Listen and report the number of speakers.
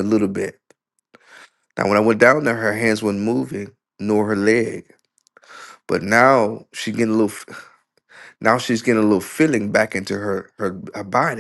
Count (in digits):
1